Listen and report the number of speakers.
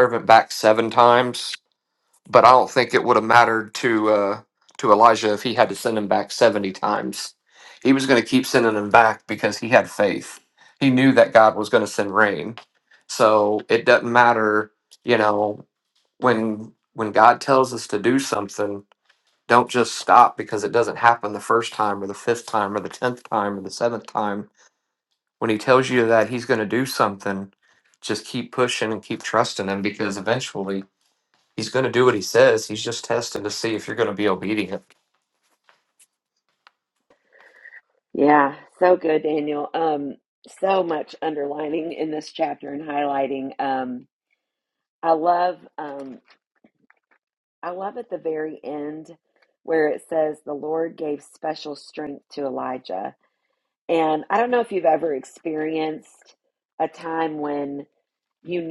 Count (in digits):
2